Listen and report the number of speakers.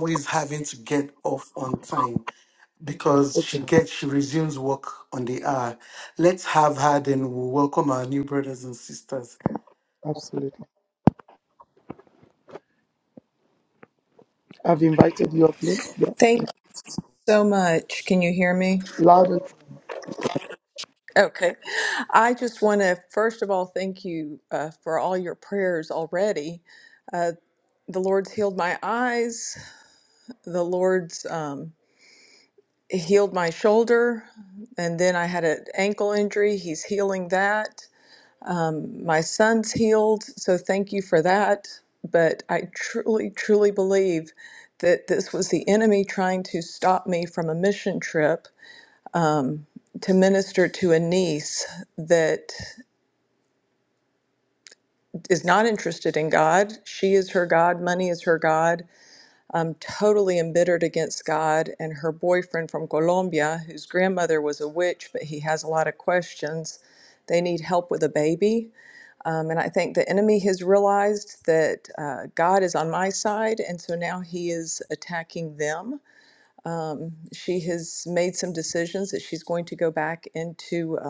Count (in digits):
3